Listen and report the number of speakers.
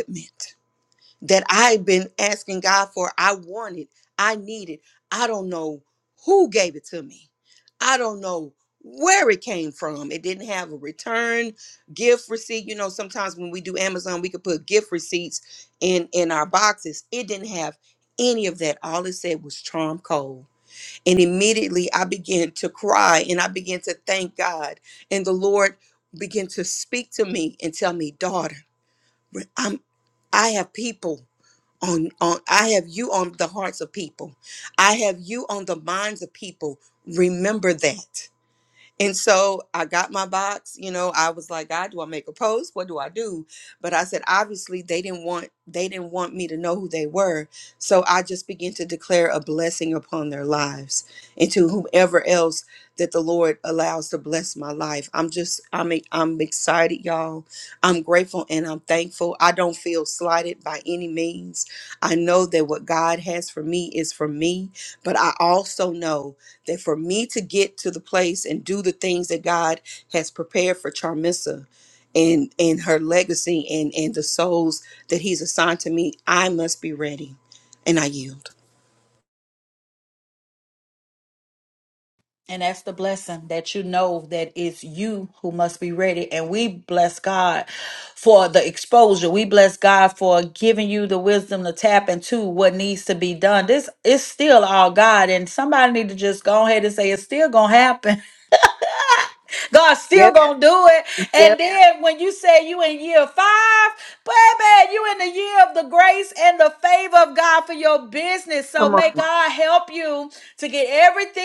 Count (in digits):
2